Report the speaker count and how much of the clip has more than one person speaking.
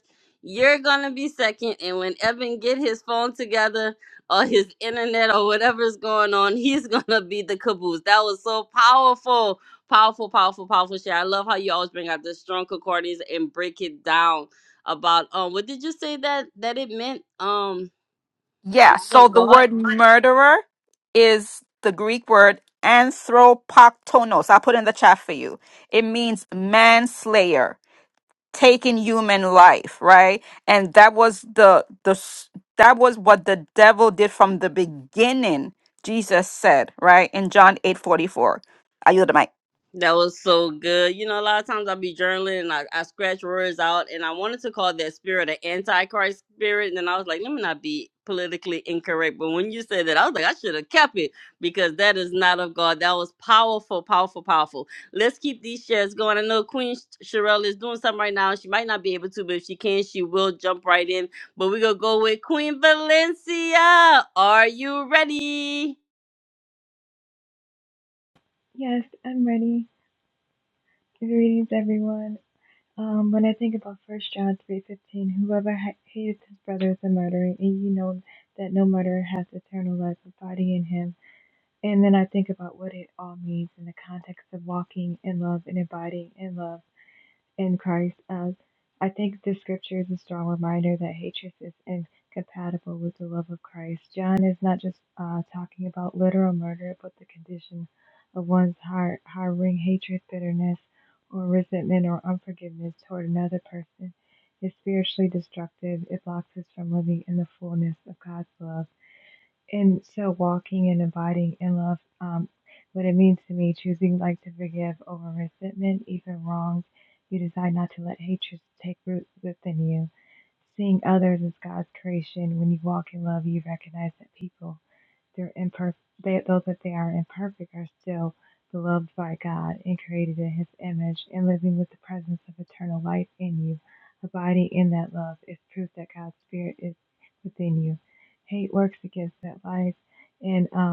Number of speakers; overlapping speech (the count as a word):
three, about 1%